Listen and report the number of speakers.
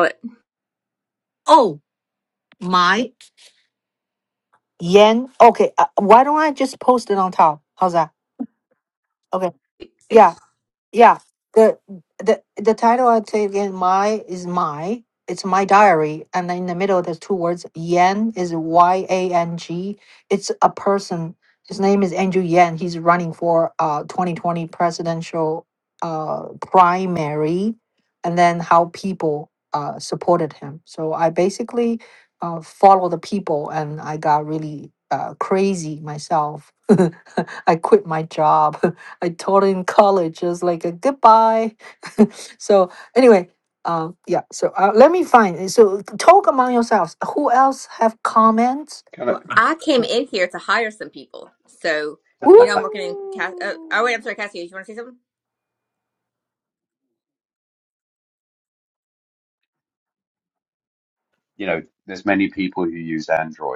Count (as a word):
three